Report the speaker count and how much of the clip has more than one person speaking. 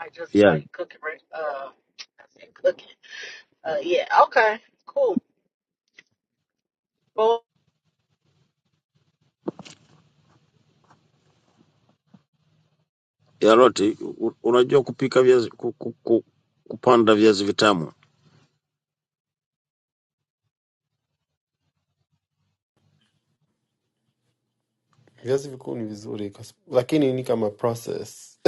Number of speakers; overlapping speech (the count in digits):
3, about 1%